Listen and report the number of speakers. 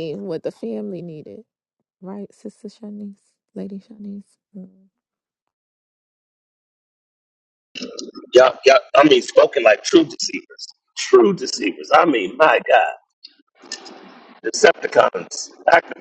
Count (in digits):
2